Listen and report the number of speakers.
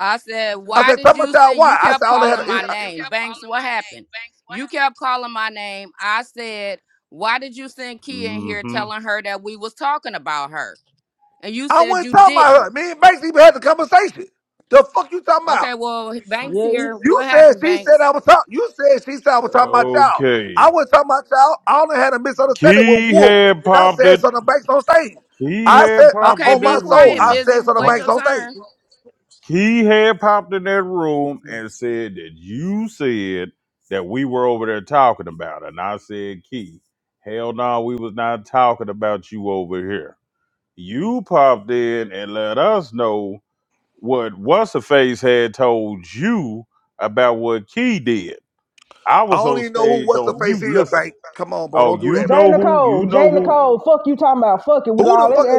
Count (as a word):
four